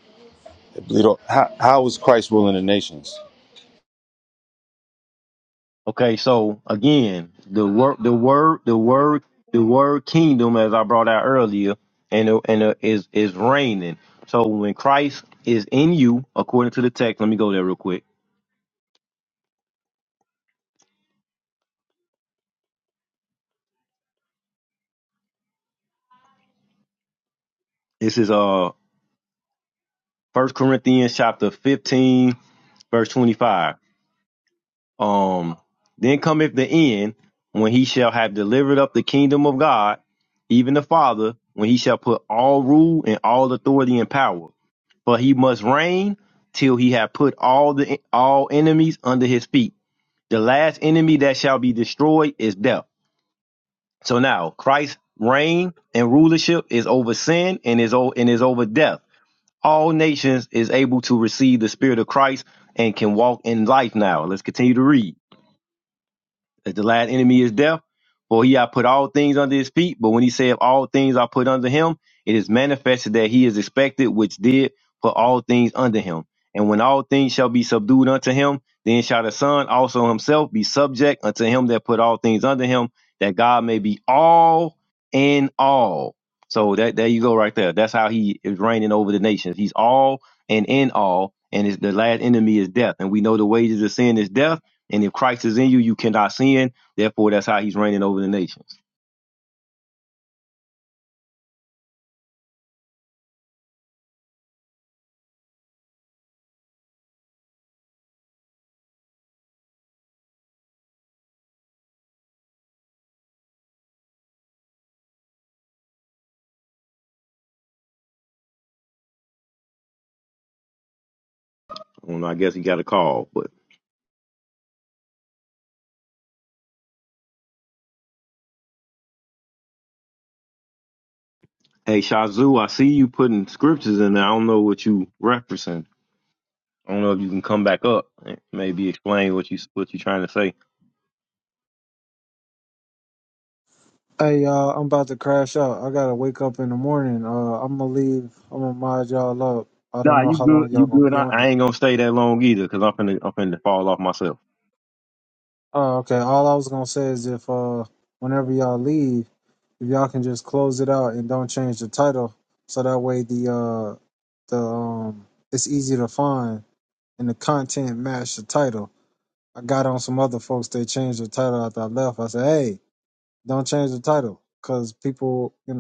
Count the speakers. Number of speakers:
3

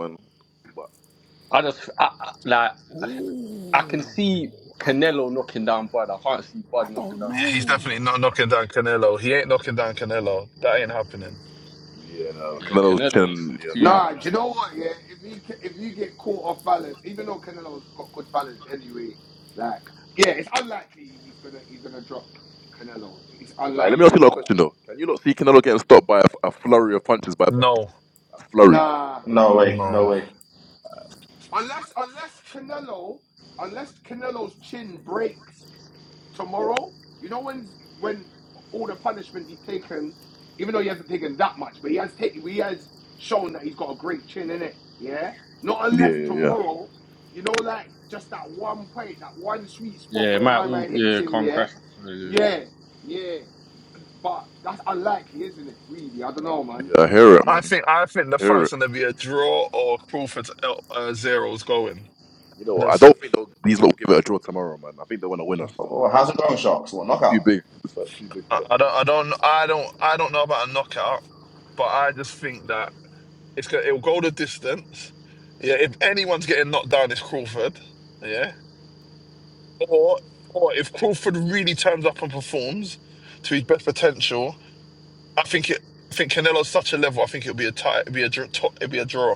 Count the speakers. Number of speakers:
6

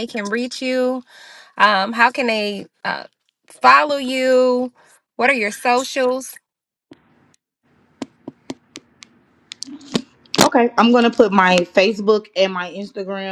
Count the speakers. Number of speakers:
2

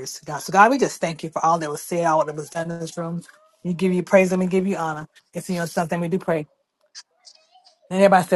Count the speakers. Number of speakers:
1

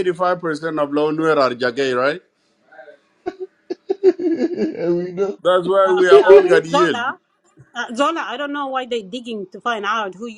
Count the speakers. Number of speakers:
3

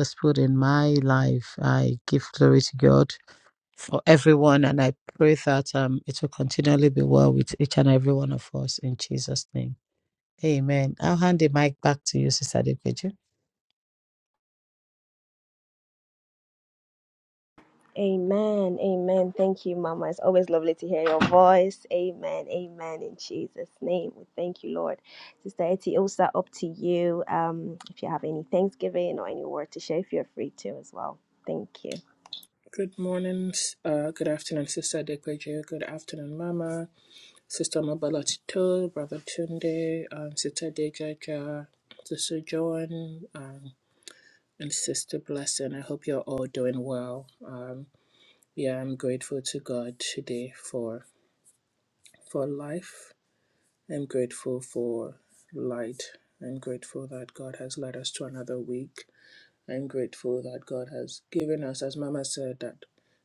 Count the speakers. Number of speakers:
3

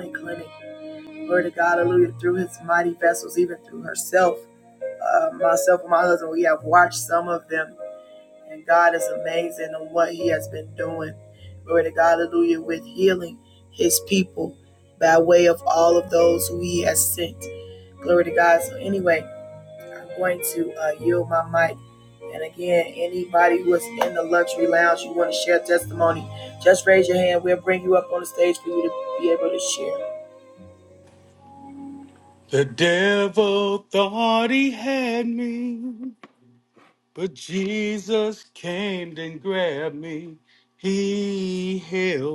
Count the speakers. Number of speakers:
2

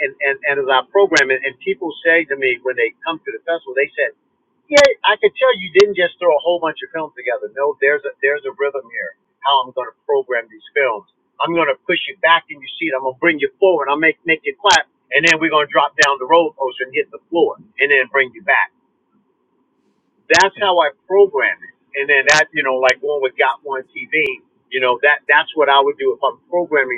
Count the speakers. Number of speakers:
1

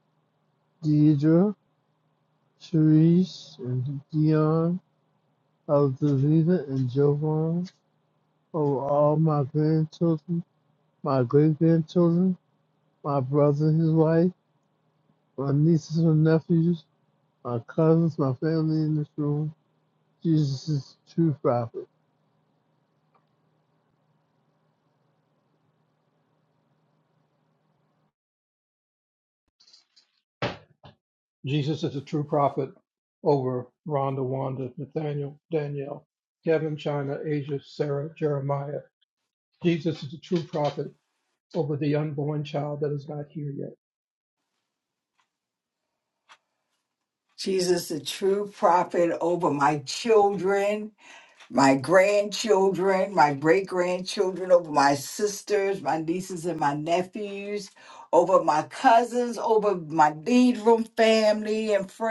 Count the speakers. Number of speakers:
3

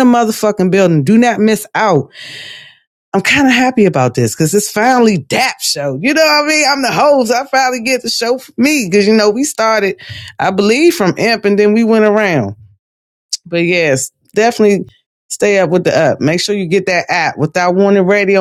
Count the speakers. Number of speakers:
1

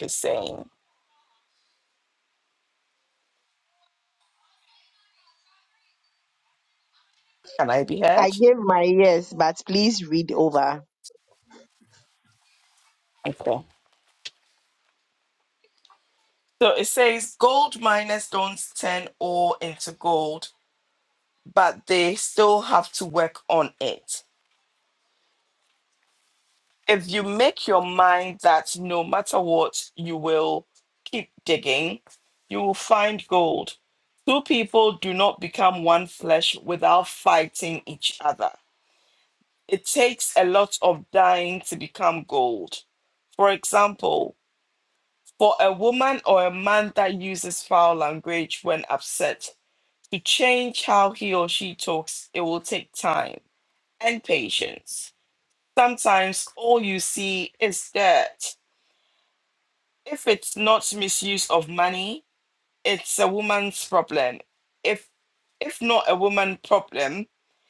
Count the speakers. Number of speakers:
2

